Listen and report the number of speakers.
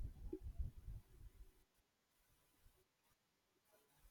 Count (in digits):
0